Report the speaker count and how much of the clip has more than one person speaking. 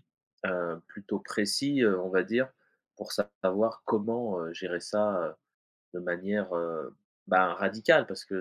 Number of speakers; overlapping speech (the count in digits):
1, no overlap